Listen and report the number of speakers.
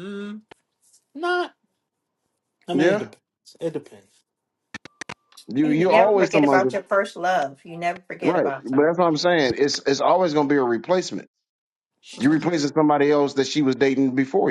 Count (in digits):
3